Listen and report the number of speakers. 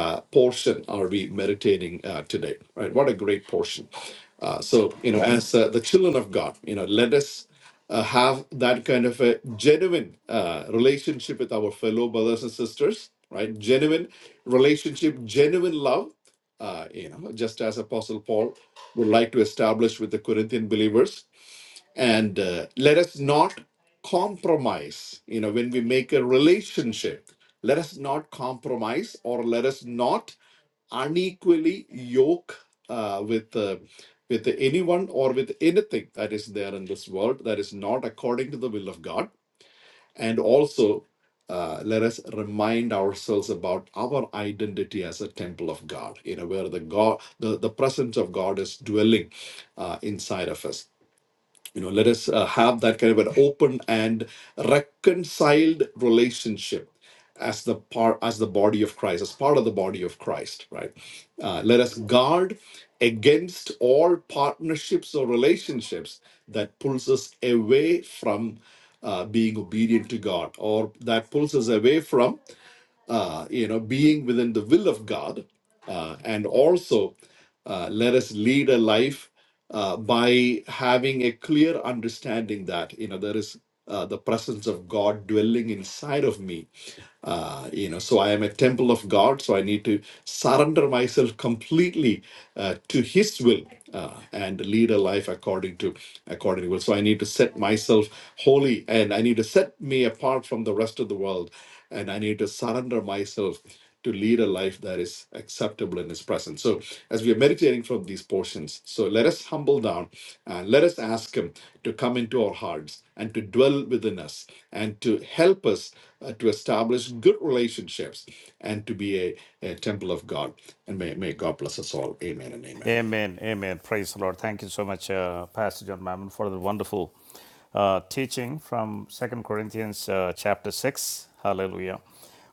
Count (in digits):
2